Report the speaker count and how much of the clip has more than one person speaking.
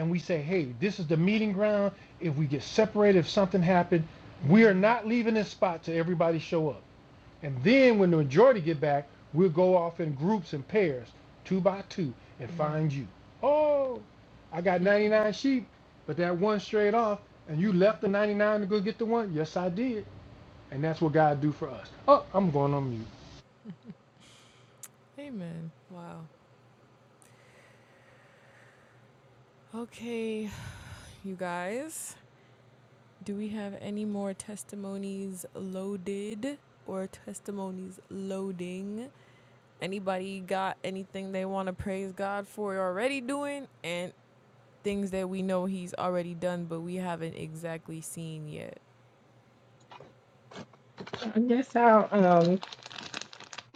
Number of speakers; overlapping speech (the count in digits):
3, about 2%